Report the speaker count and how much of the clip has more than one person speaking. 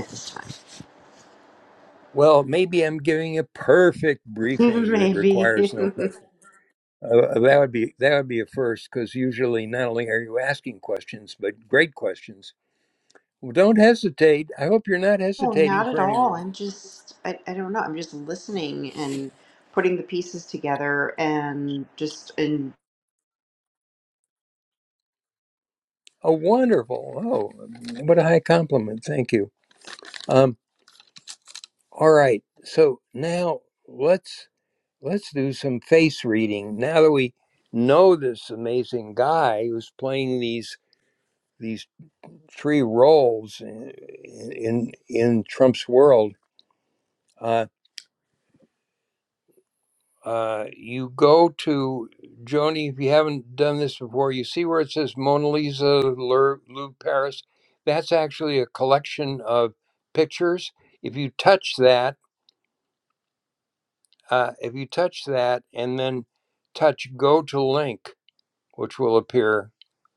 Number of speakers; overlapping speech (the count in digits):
2, about 3%